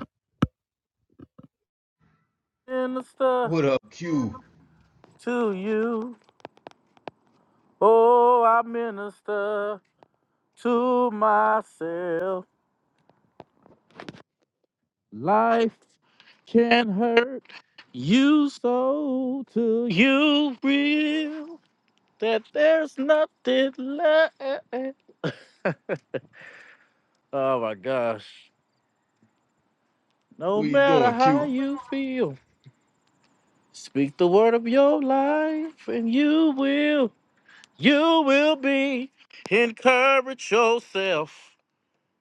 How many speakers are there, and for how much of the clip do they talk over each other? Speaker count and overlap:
2, about 3%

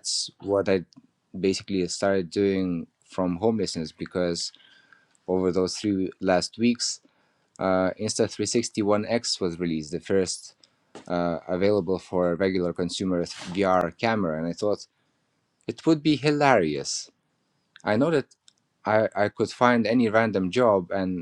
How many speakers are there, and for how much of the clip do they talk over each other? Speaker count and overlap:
1, no overlap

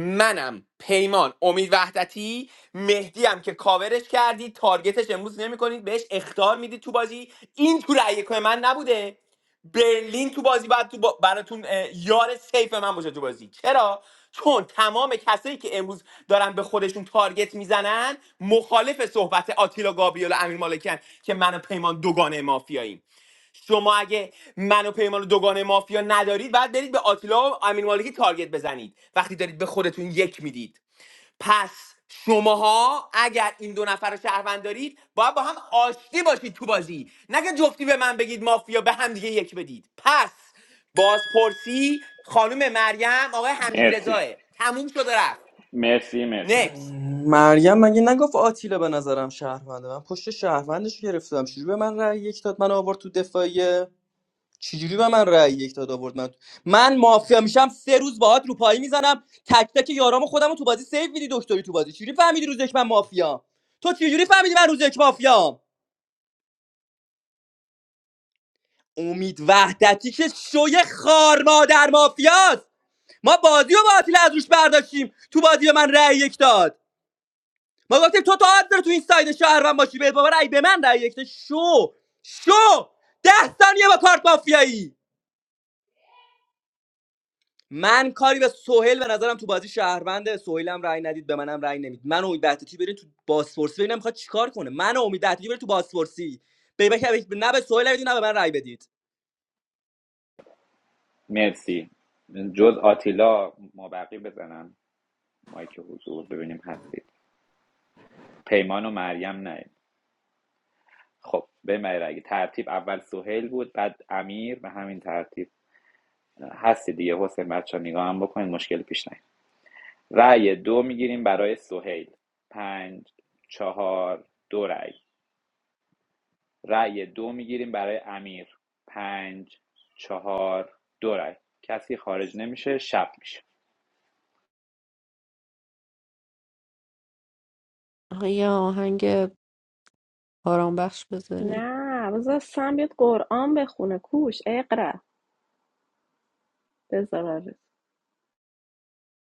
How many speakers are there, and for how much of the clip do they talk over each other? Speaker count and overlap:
5, about 1%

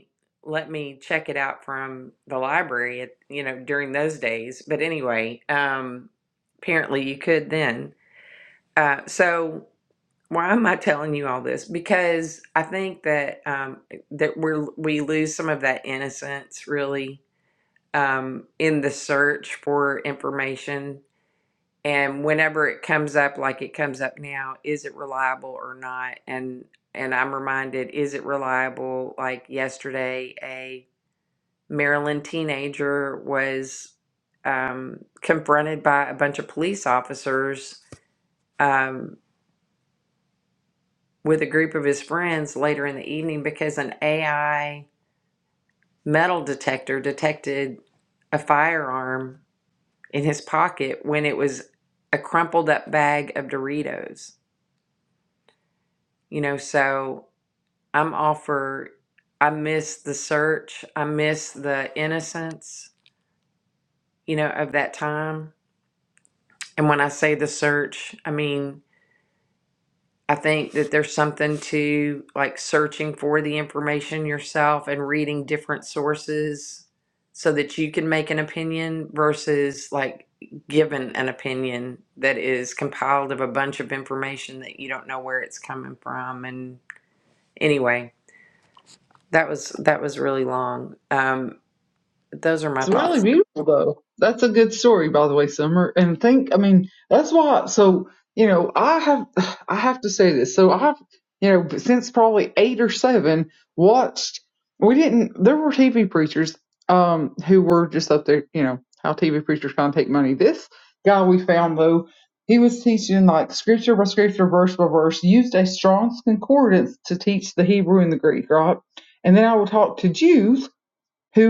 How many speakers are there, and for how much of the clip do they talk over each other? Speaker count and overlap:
2, under 1%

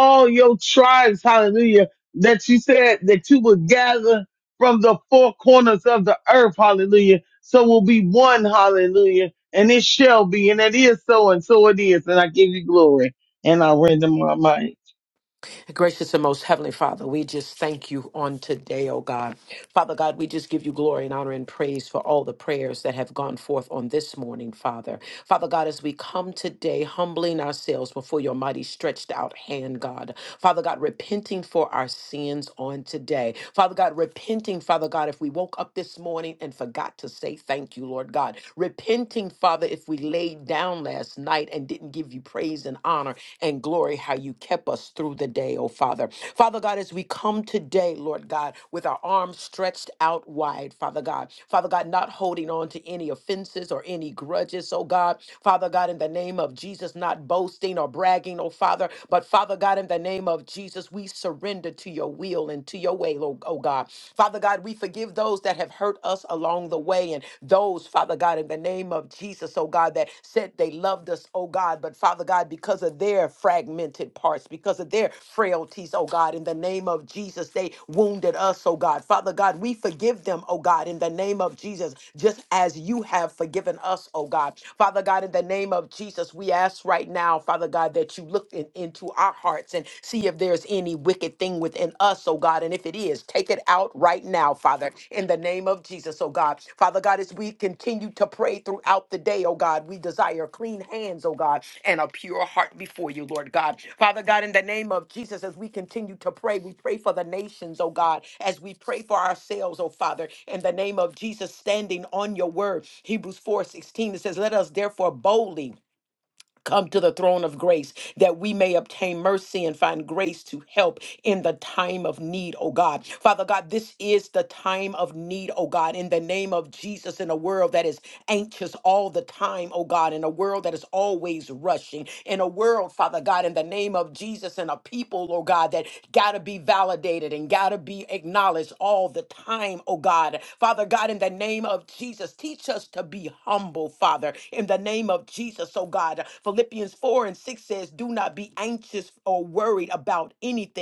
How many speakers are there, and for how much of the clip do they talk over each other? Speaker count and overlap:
2, no overlap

